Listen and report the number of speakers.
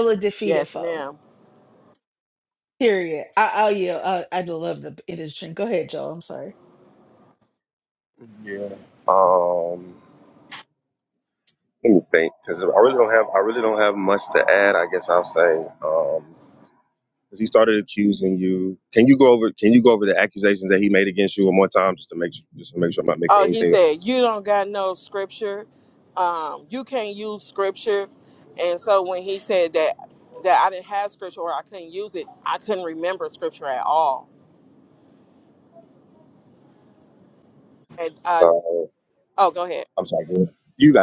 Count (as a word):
three